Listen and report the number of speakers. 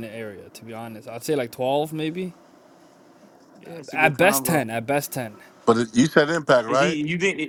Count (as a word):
three